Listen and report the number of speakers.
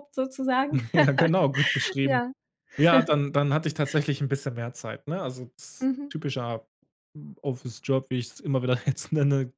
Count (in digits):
2